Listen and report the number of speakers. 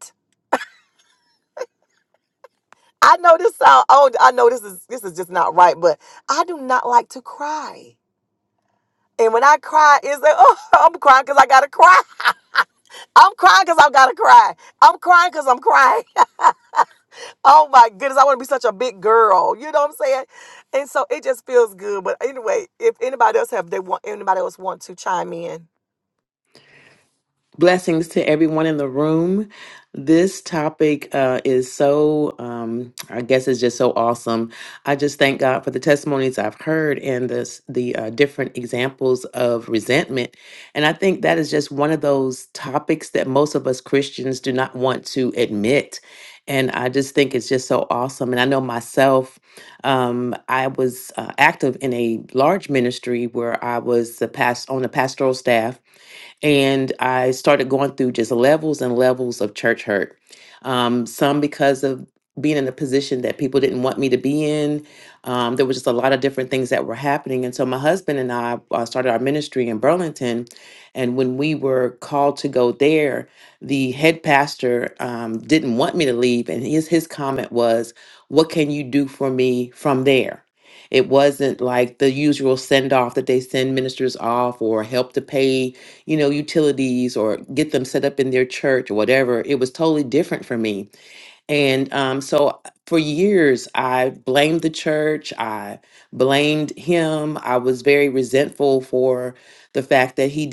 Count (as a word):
two